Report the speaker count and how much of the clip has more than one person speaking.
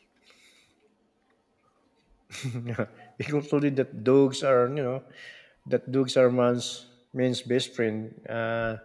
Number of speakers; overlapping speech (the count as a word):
one, no overlap